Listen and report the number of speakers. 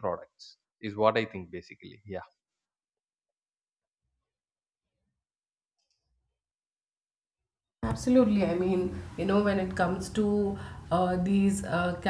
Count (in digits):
2